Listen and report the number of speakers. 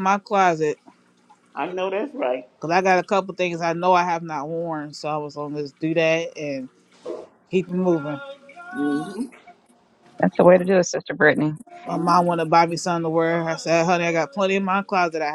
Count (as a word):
three